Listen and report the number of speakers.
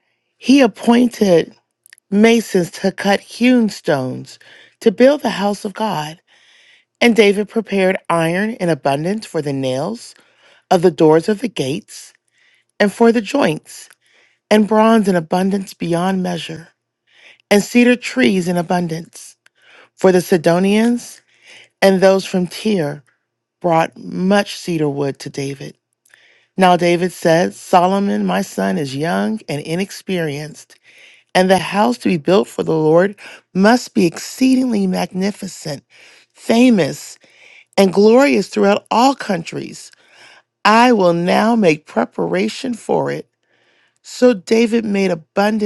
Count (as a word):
one